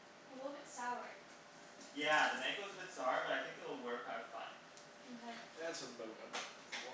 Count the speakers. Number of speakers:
three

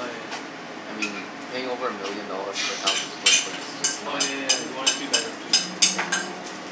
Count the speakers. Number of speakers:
two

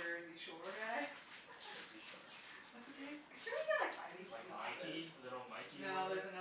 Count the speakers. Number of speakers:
three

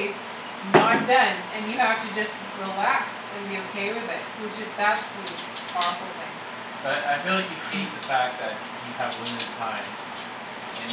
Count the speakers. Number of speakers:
two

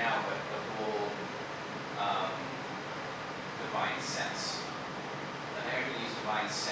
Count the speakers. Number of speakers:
one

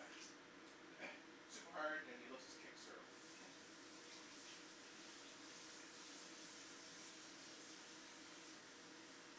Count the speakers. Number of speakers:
one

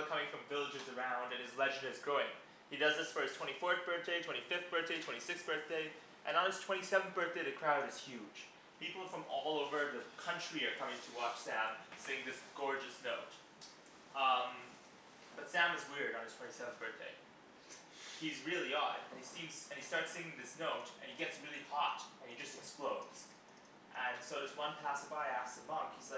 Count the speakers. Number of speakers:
one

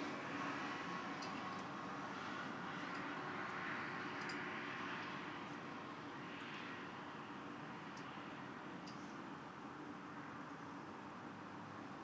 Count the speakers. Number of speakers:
zero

